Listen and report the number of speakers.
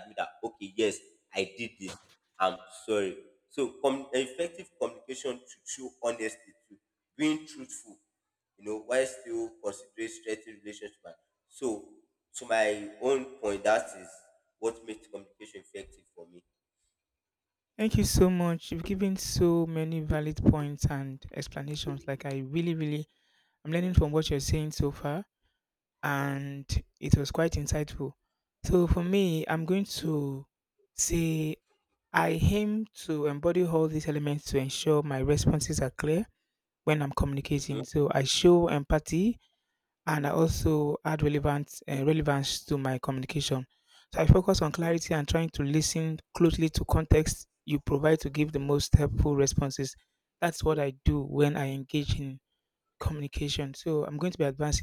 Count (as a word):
two